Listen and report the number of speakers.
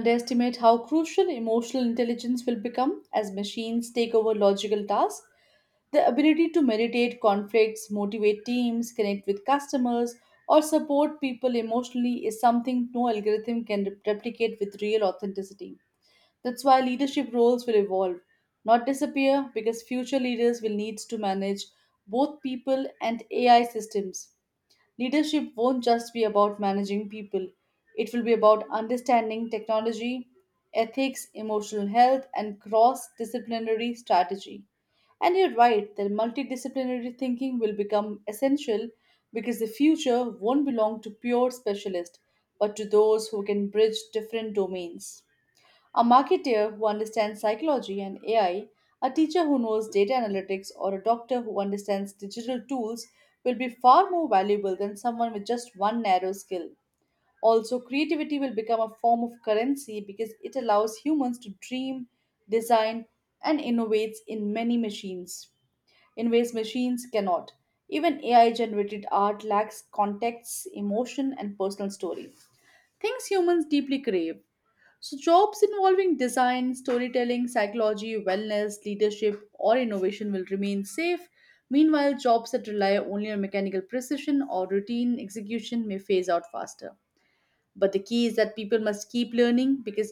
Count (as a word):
one